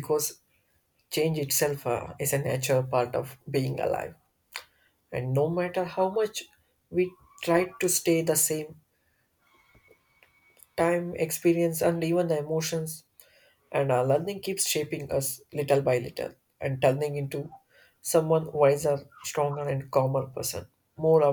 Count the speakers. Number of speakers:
one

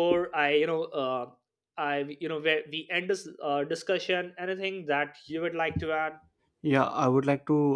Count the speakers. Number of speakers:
two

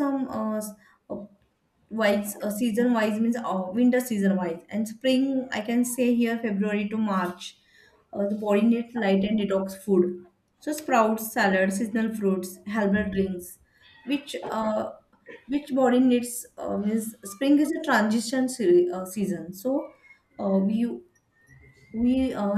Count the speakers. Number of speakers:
one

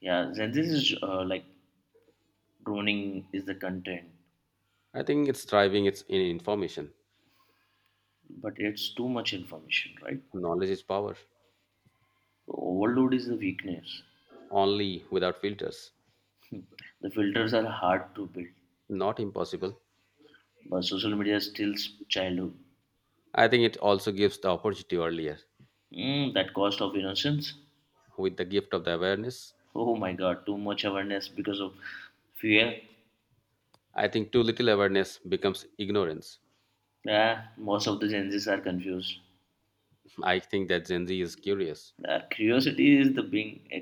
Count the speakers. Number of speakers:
two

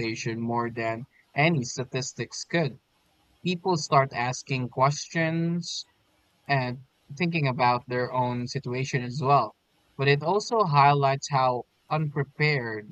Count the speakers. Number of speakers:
one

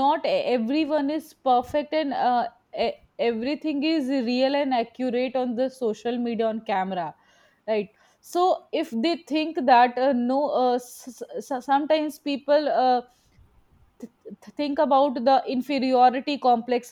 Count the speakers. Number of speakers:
one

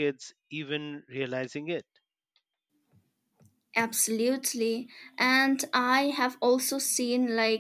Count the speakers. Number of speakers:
two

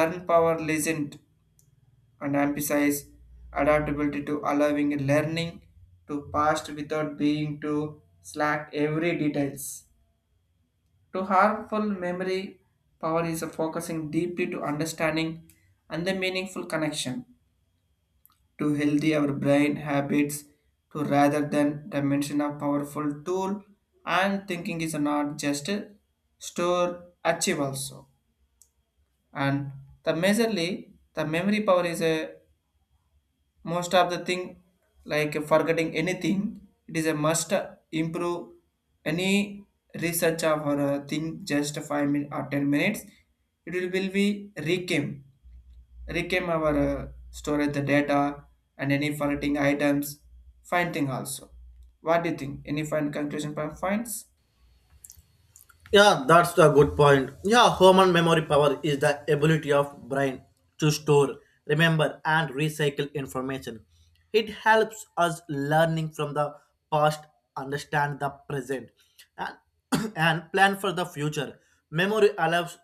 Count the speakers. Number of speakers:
two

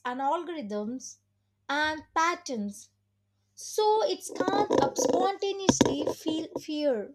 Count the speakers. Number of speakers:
one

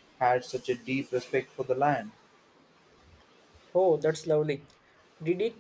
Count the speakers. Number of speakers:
two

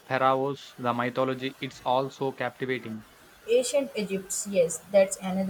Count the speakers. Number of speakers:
two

